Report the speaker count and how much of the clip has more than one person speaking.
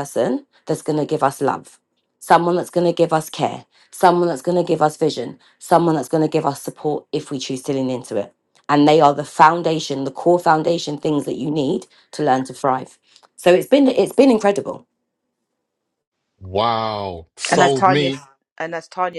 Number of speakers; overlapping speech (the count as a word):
three, about 4%